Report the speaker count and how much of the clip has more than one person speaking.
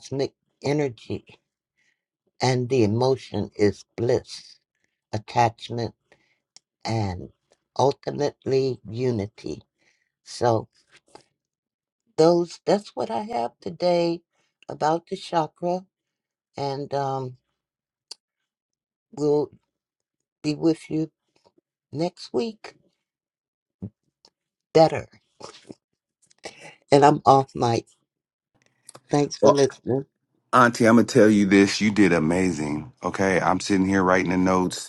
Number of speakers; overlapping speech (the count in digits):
2, no overlap